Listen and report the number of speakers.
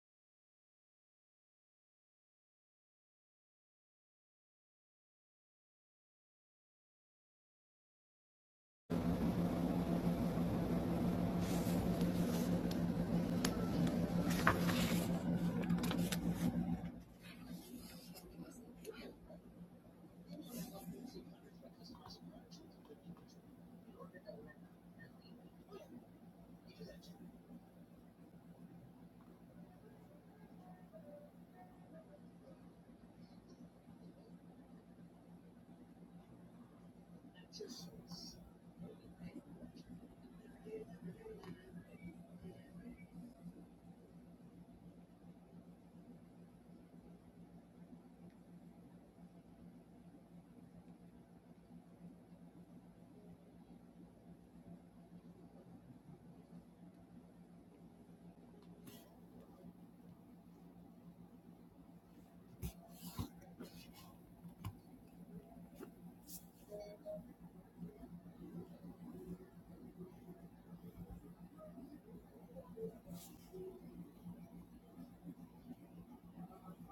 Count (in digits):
0